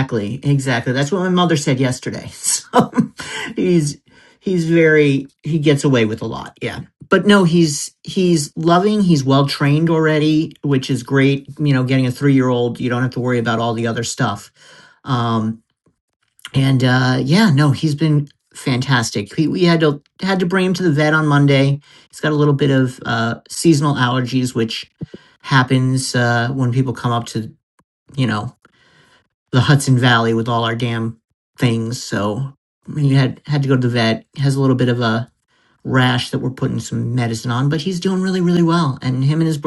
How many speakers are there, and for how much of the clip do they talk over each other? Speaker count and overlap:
1, no overlap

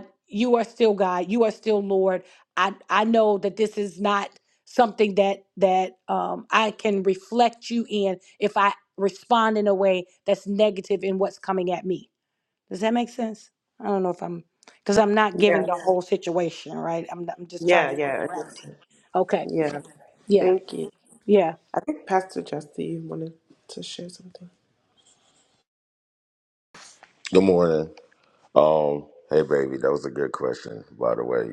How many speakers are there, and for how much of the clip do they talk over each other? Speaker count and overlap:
3, about 5%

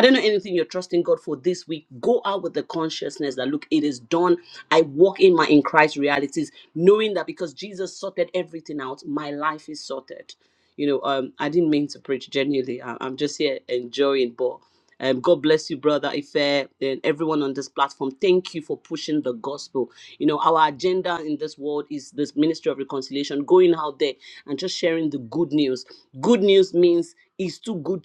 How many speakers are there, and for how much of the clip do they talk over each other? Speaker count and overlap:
1, no overlap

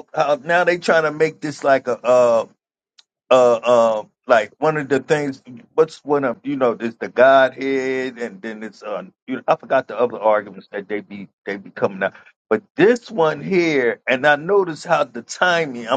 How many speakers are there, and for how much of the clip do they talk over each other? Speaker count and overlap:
1, no overlap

